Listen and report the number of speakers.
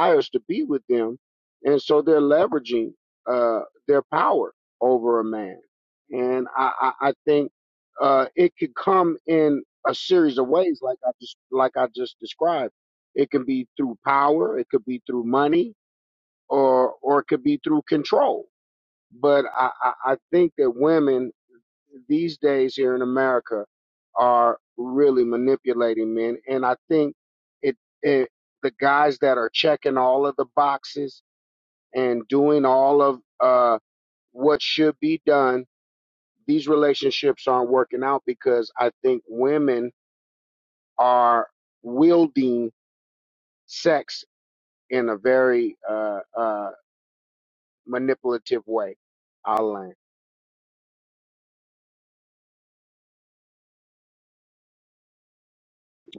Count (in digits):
1